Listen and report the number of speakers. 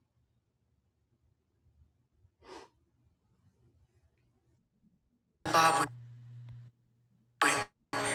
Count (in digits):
0